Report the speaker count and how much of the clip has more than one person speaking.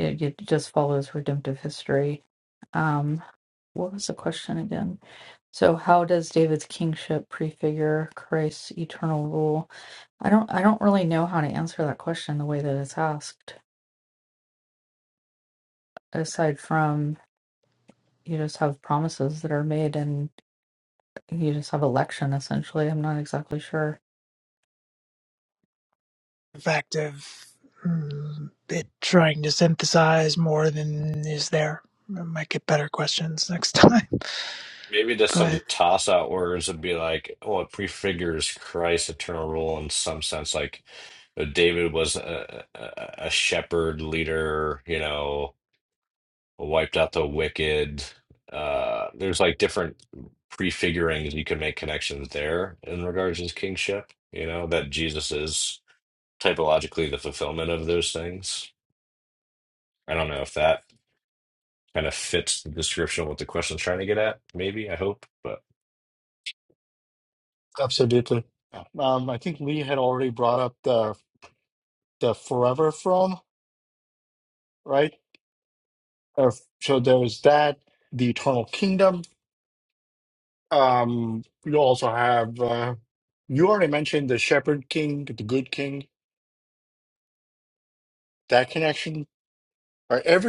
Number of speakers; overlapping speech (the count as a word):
four, under 1%